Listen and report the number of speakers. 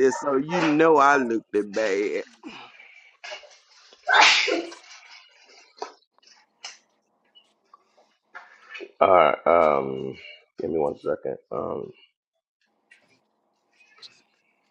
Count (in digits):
2